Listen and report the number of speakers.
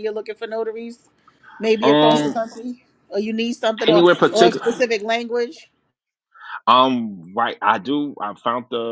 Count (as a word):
two